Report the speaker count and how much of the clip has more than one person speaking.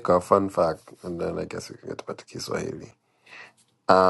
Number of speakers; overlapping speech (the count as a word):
one, no overlap